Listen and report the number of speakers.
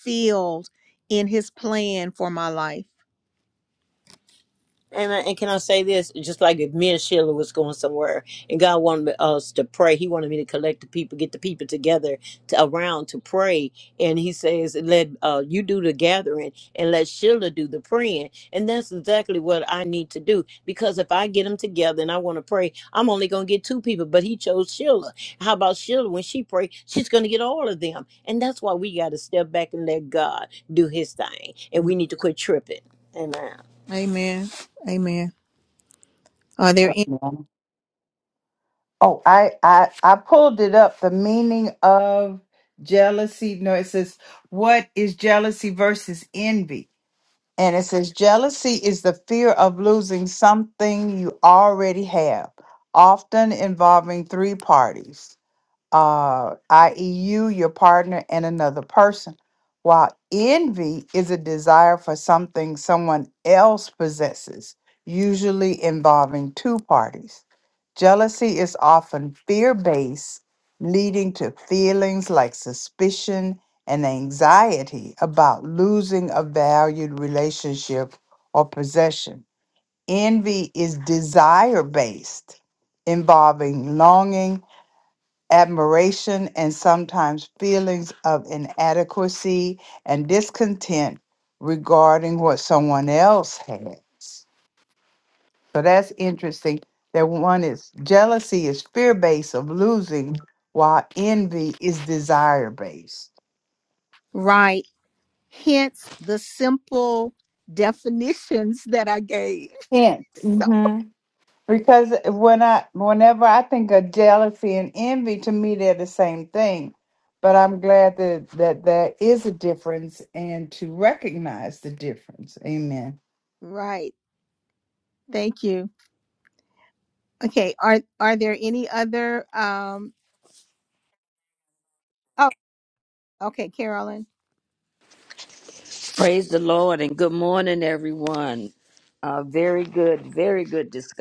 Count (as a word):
four